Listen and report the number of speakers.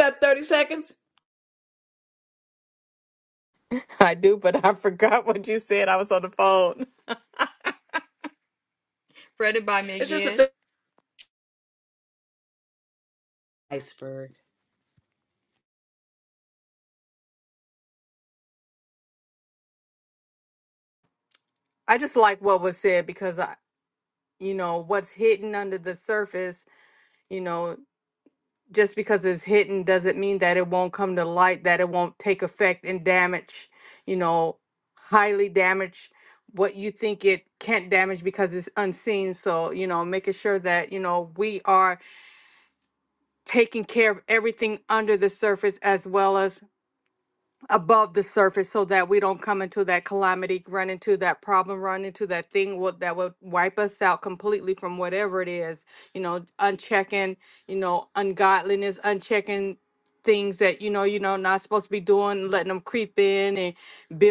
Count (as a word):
two